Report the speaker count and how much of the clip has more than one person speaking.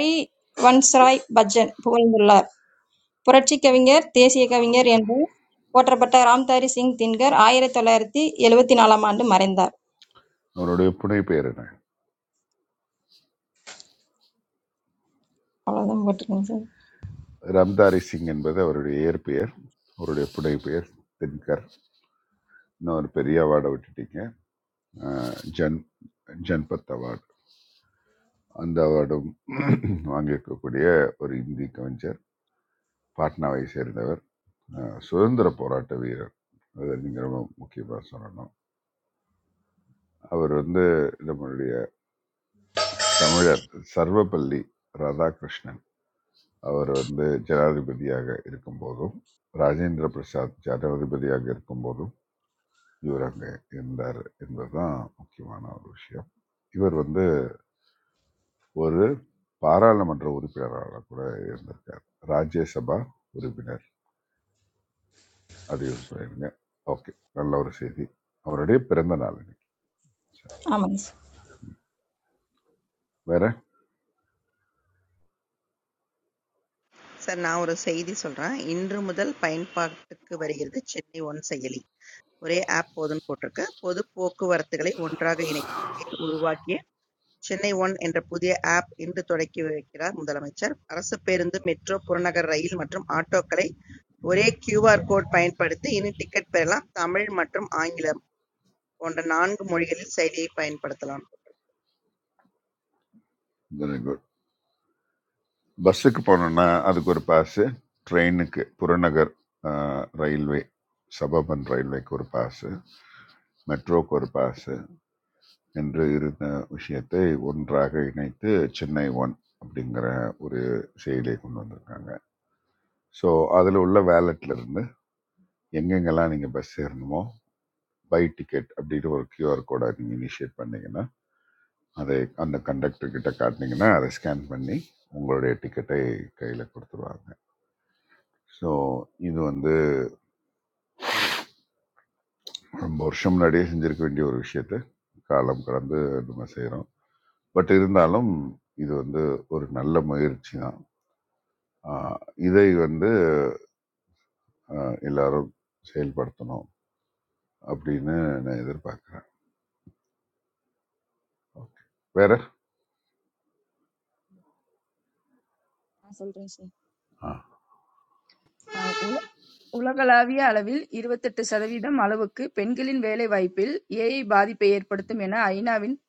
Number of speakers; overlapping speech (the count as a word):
four, no overlap